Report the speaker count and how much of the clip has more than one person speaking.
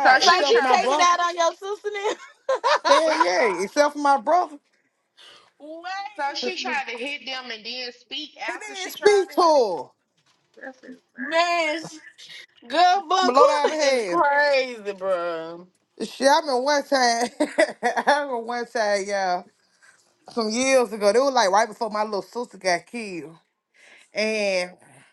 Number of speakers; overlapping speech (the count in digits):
3, about 16%